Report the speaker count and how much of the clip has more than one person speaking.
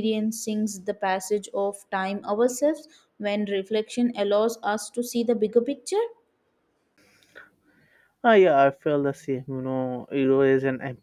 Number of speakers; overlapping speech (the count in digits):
2, no overlap